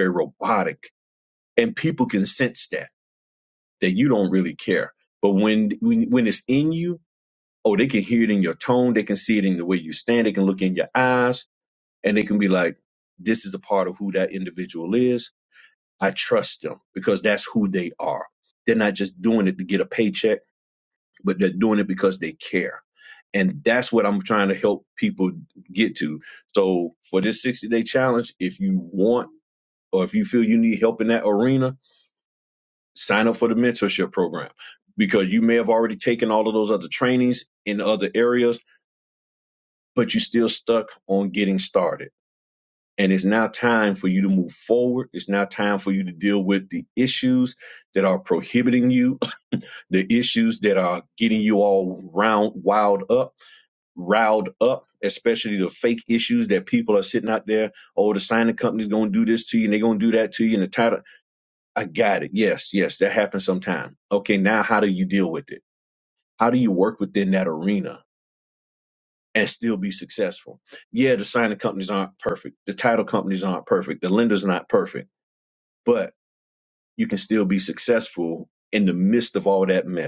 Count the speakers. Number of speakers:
1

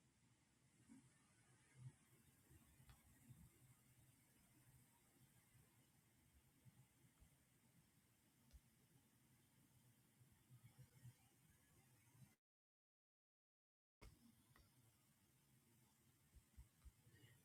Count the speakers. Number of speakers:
0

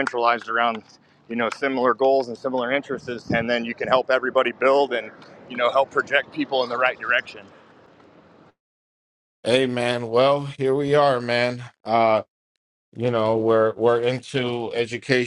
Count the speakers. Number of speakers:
2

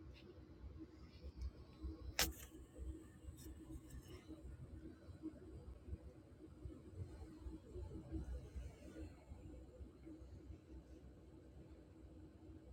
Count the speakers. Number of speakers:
0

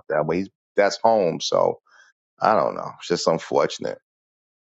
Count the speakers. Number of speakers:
1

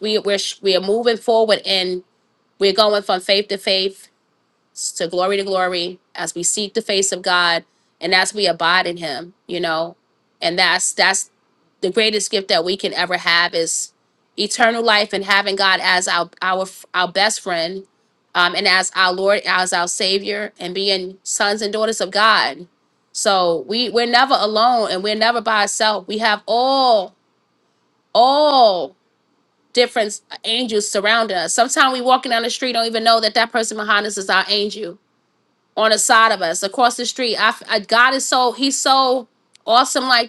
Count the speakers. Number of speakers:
1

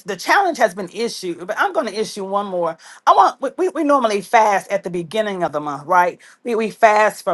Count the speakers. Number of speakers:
1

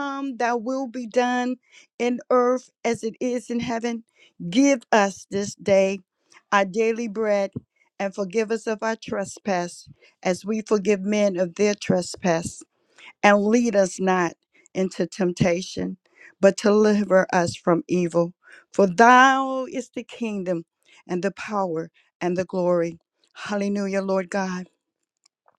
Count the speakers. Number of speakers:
1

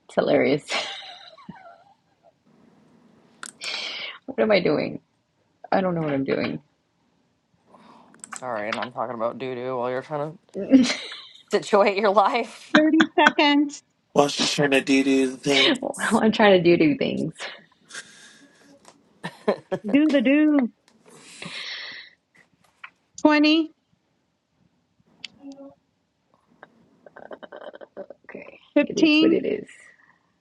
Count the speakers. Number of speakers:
4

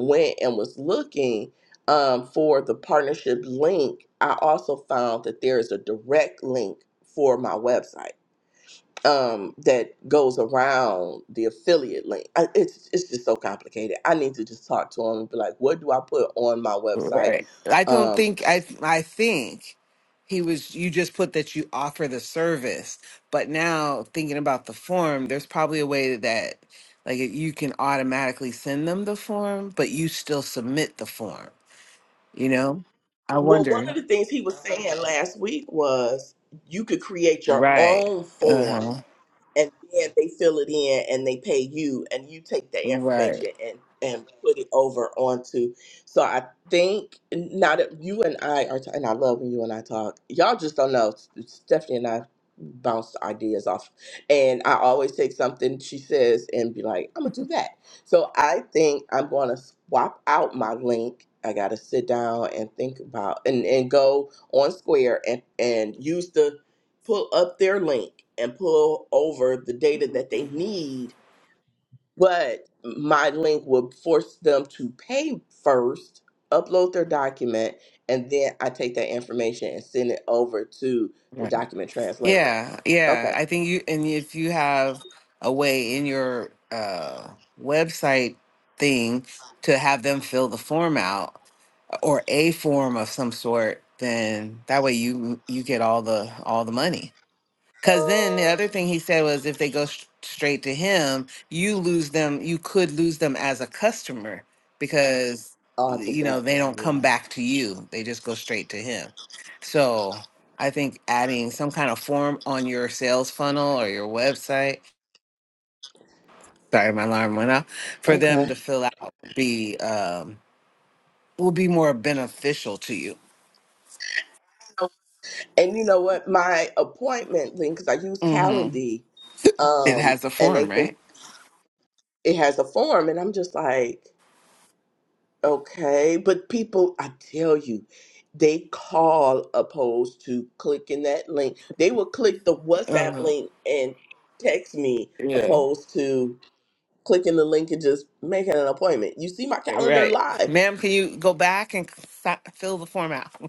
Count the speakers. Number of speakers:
2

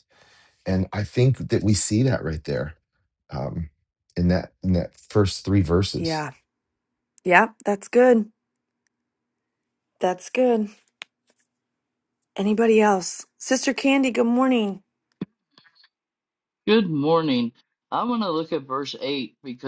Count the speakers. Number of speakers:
3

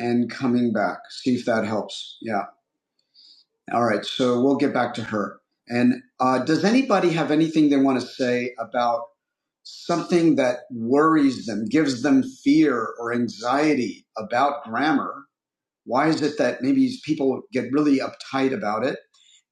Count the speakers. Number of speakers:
1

